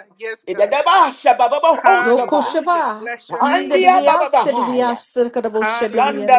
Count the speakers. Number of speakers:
three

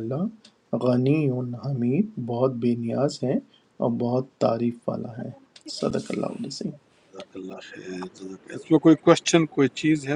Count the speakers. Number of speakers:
two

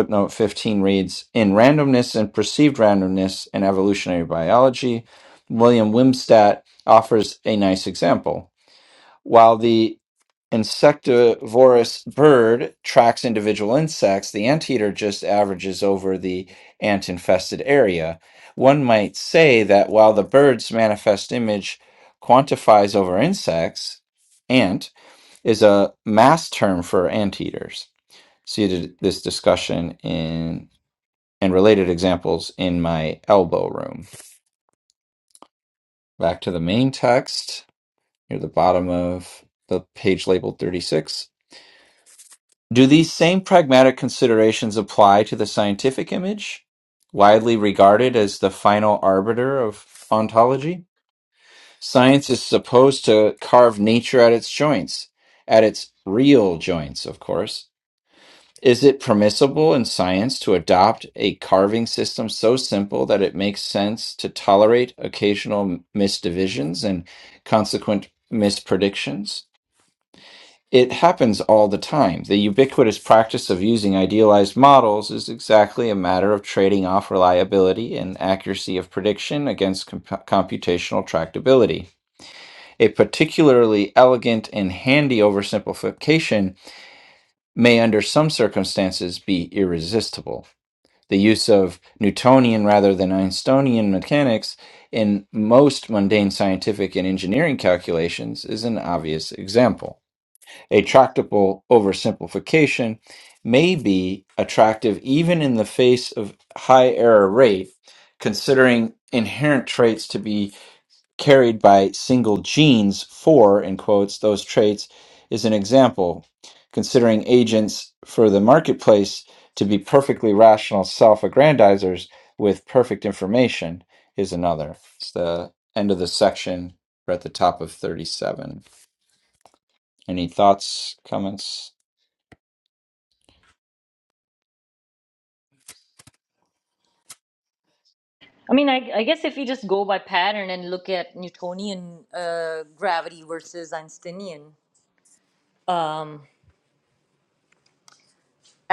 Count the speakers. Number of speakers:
two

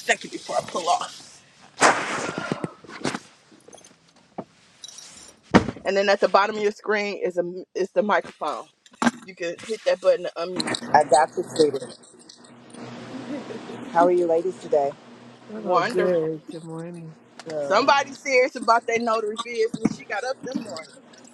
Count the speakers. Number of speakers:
three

